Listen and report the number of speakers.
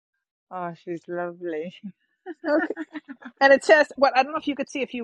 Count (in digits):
2